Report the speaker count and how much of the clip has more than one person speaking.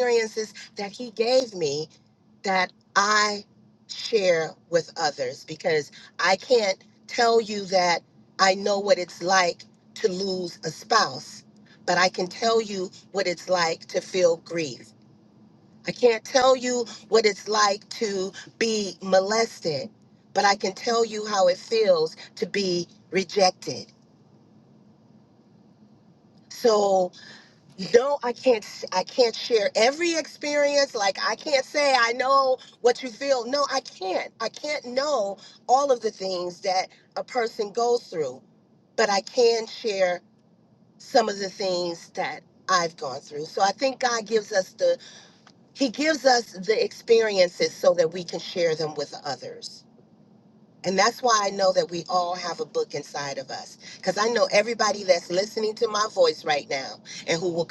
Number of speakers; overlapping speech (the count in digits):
1, no overlap